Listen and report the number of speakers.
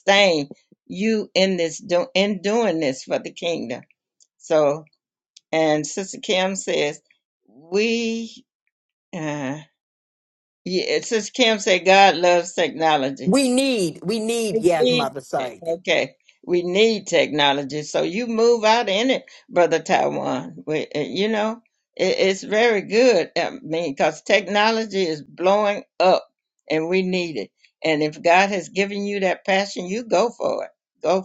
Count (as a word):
two